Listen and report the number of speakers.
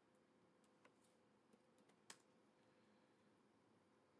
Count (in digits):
0